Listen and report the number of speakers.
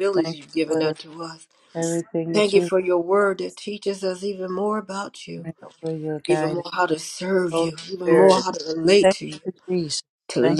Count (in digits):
2